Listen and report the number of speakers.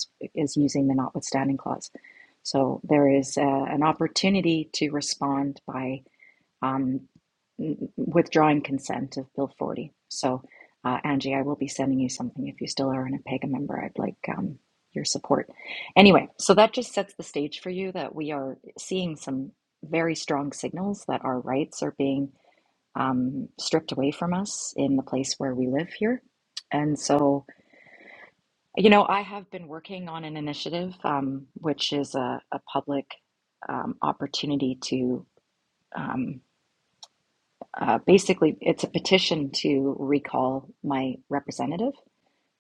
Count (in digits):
1